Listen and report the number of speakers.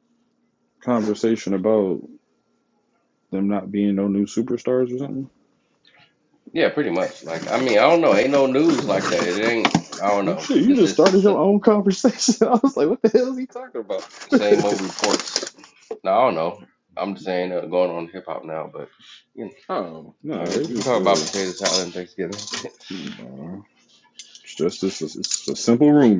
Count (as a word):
two